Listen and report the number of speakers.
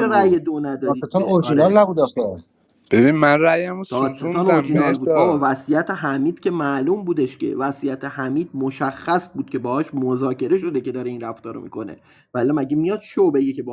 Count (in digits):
3